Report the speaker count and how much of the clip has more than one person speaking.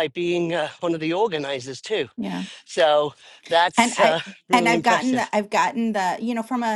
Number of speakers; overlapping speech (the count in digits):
2, about 17%